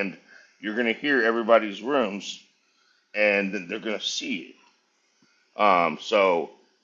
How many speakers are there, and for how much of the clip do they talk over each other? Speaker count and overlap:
1, no overlap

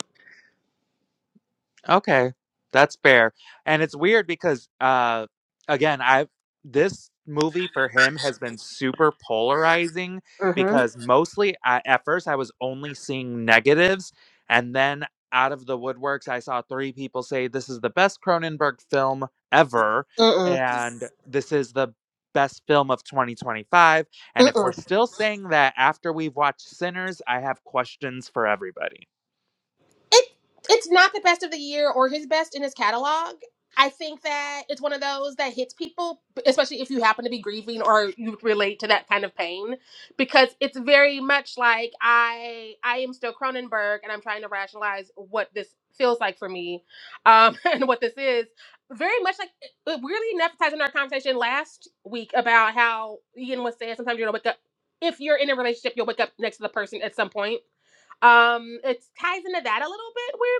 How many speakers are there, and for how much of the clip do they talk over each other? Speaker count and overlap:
2, about 1%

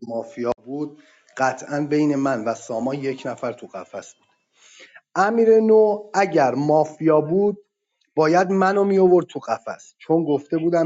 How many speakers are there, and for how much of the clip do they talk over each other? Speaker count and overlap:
1, no overlap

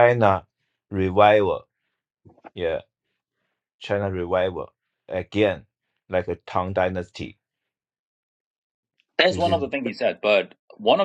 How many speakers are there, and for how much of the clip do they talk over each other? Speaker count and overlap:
2, no overlap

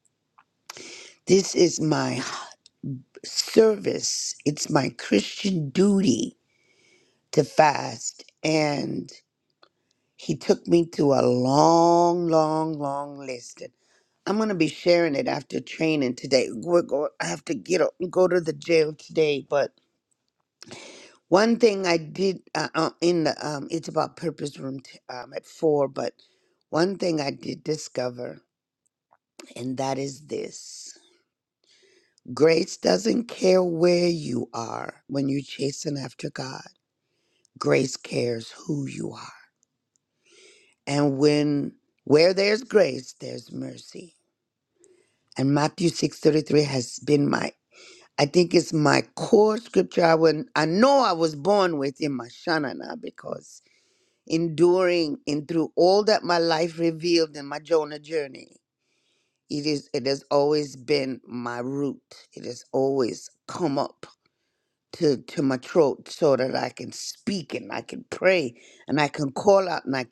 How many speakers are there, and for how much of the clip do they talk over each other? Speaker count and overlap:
1, no overlap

